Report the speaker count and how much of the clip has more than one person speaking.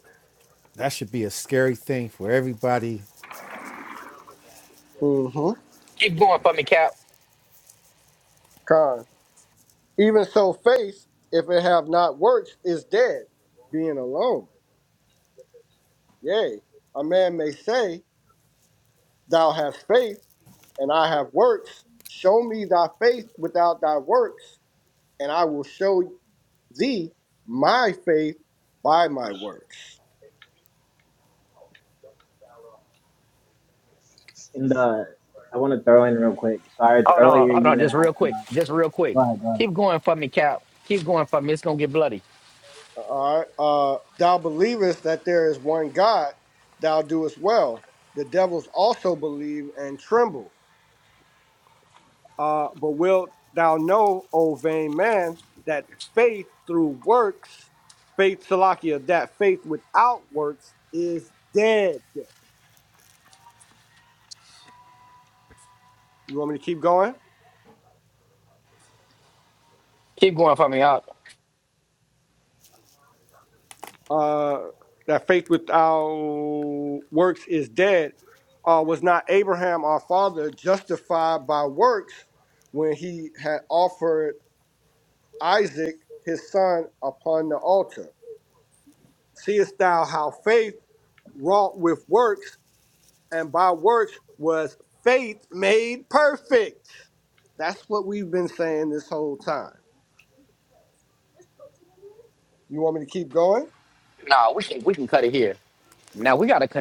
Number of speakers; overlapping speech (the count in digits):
4, about 1%